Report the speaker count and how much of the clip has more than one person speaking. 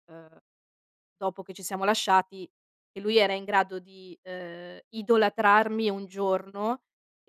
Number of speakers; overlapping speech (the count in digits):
1, no overlap